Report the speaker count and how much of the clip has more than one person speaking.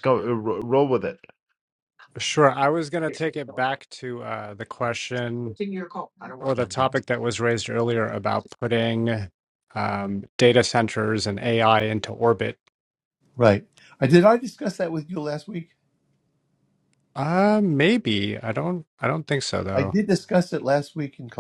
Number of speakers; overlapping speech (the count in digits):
3, about 1%